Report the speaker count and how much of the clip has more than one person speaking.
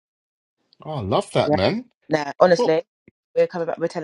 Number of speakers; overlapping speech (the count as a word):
two, about 6%